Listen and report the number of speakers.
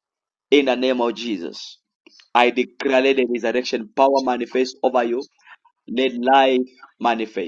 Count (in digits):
1